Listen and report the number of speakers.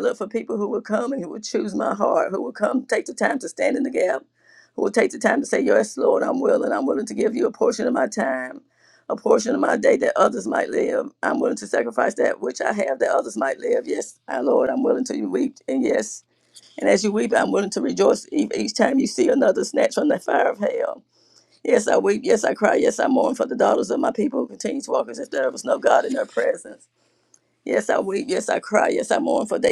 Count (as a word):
one